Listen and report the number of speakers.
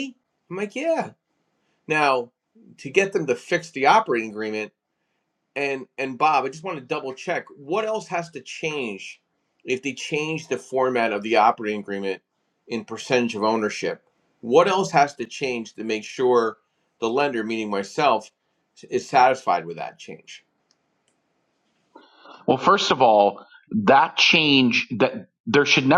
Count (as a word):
two